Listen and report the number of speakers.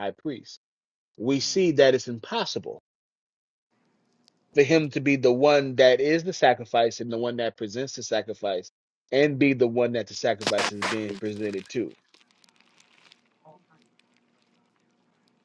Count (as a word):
one